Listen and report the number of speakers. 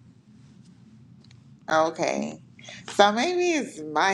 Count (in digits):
1